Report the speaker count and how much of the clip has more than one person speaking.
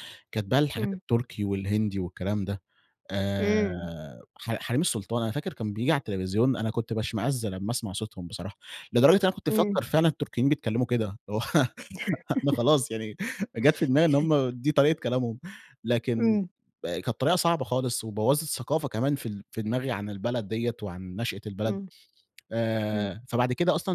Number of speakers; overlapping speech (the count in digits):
2, about 5%